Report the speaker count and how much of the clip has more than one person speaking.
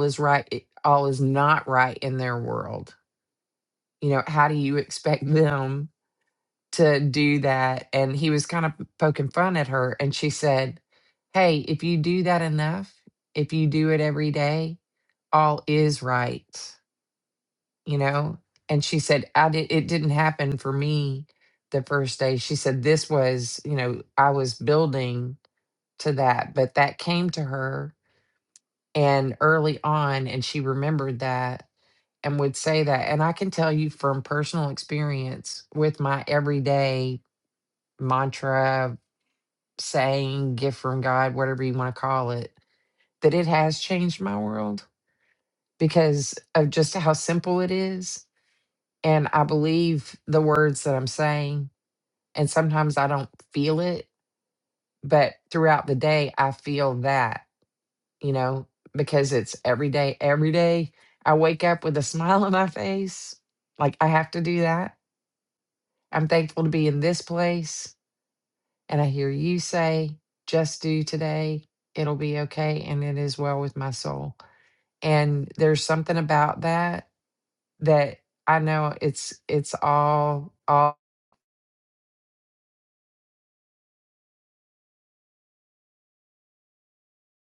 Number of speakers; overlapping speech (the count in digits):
1, no overlap